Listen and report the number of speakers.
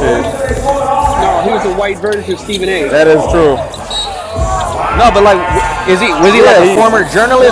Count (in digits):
3